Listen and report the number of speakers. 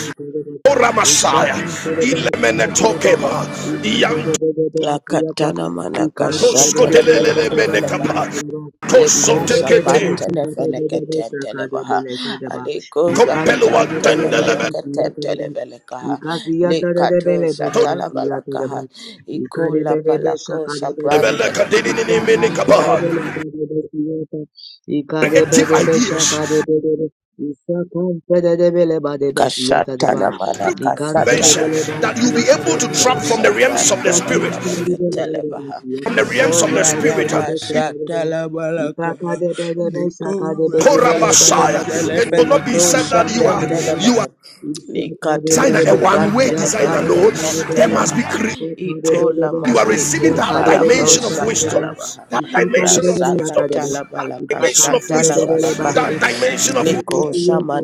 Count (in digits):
3